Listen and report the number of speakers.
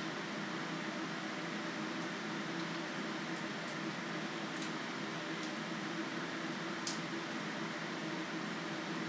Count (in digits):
0